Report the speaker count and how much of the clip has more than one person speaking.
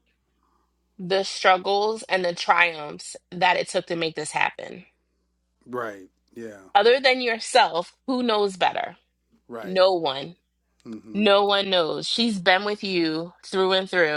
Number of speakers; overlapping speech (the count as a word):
two, about 2%